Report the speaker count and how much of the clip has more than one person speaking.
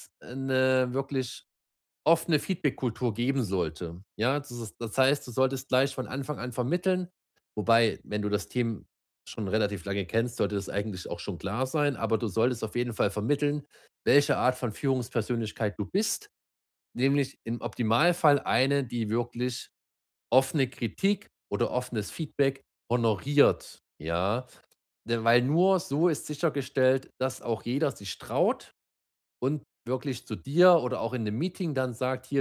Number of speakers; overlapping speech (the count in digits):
1, no overlap